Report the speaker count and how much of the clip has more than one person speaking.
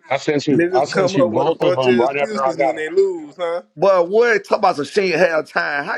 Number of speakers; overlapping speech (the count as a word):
three, about 40%